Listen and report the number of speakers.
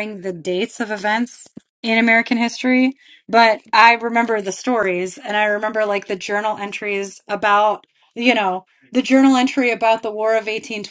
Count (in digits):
1